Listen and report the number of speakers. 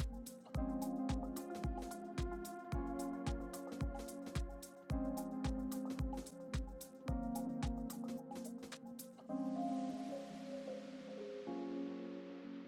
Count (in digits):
0